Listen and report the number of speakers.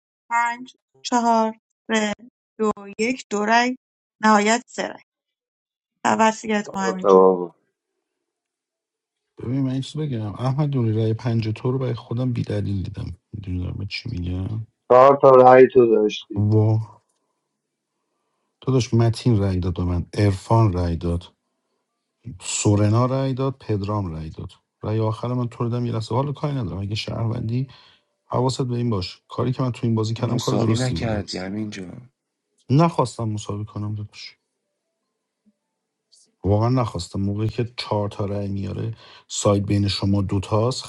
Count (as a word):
four